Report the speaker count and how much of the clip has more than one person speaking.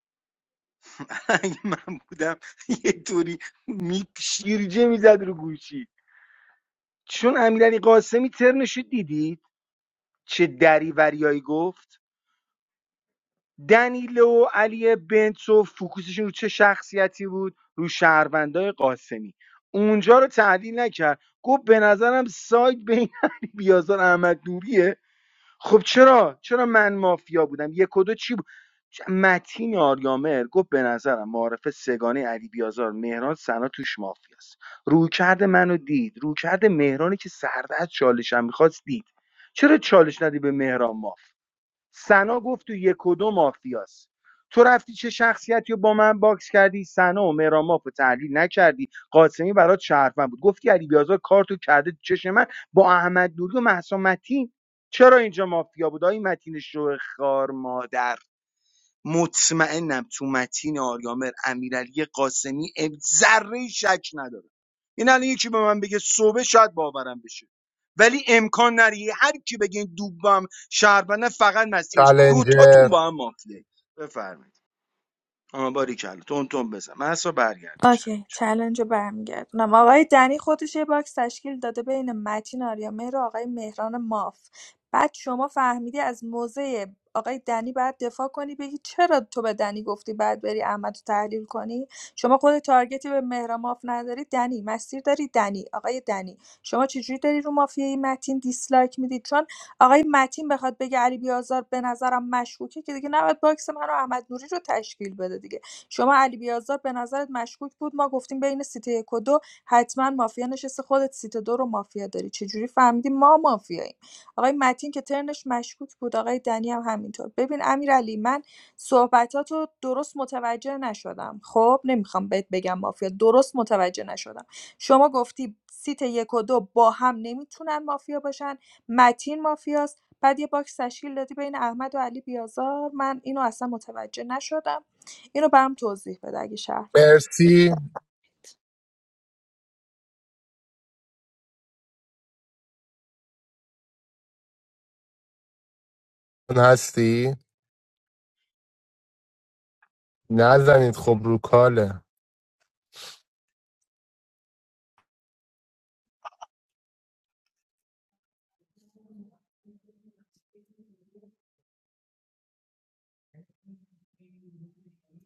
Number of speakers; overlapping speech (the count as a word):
three, about 1%